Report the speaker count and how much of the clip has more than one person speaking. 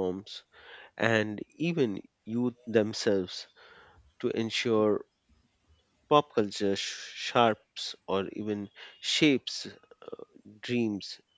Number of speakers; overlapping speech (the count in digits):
1, no overlap